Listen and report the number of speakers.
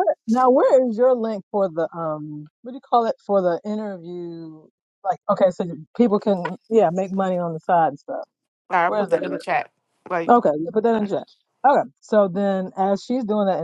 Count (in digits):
2